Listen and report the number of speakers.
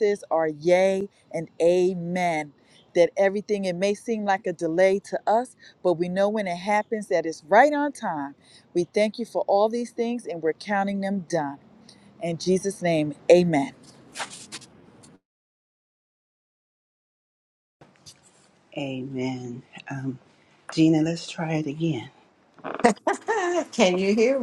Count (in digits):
3